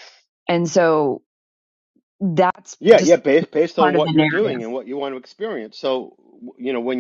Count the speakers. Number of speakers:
two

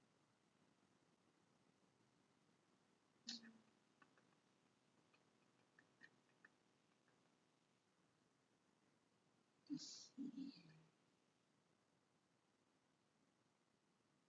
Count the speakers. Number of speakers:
zero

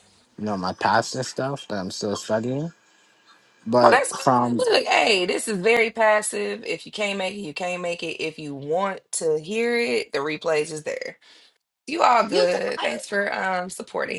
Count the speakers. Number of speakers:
two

